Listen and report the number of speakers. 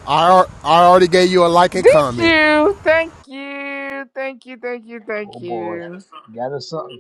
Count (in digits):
3